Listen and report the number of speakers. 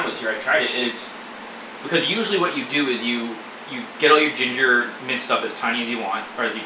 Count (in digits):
1